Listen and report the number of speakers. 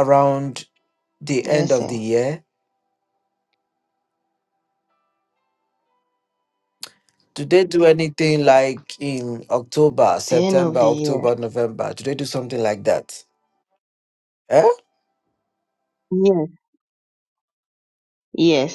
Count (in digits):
2